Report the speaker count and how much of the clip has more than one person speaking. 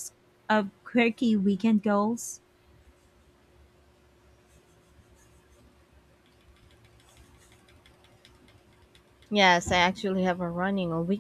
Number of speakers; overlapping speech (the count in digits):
2, no overlap